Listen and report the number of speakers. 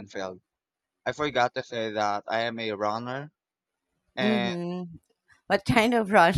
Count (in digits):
2